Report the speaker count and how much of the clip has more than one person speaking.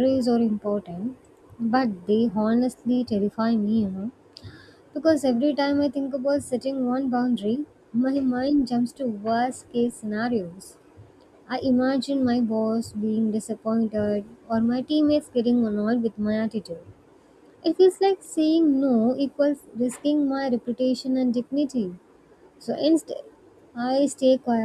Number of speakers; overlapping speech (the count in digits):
1, no overlap